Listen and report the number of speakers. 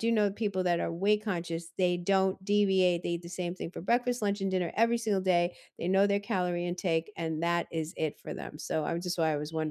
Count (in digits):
1